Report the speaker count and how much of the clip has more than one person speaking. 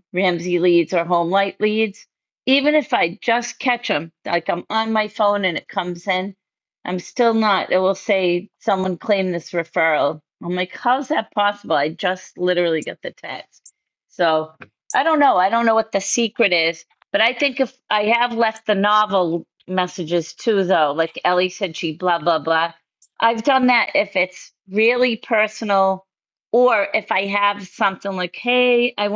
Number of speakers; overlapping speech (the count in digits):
1, no overlap